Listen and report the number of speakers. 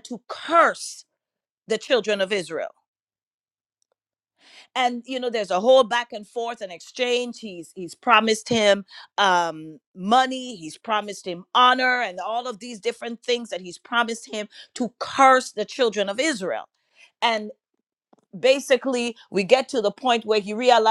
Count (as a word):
one